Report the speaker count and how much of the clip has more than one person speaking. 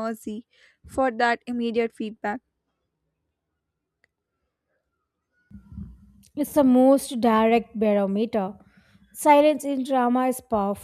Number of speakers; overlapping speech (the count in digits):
2, no overlap